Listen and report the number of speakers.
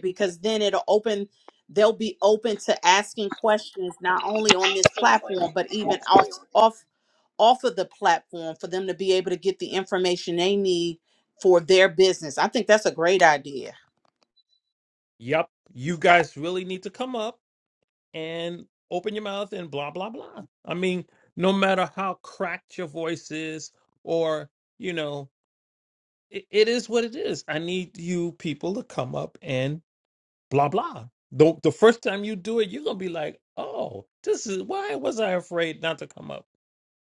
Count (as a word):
two